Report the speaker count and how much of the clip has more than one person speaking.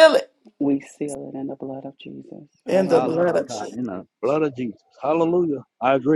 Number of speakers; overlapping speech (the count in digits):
3, about 11%